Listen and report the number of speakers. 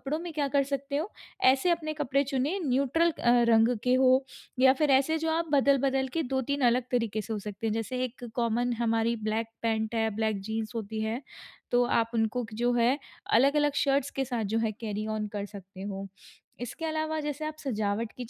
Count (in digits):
1